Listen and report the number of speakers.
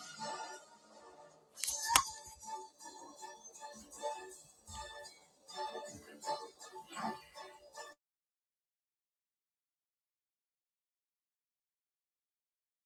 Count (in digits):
0